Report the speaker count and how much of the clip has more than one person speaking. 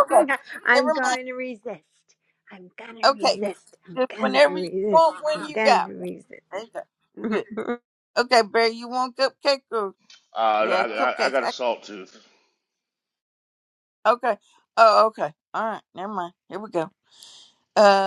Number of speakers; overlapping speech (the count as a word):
three, about 18%